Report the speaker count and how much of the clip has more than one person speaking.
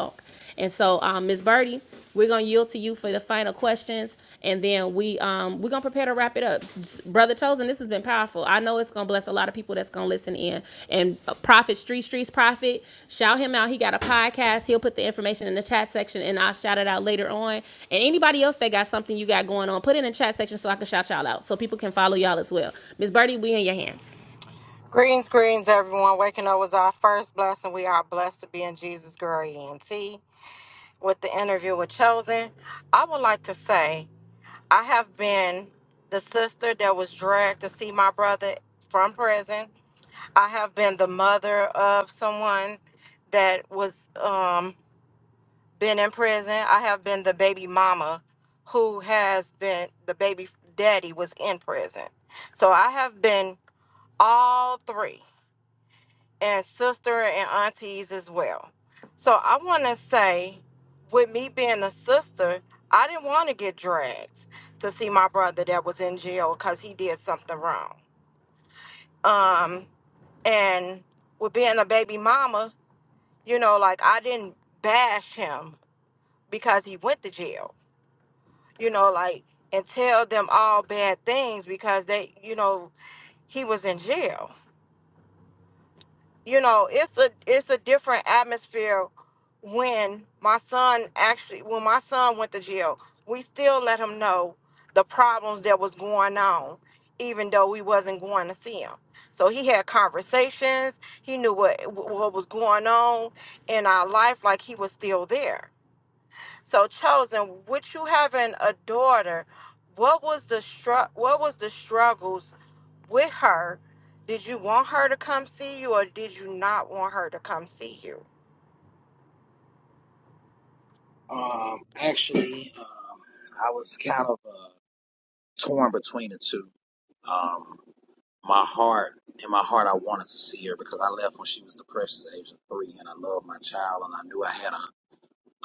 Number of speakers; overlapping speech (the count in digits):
3, no overlap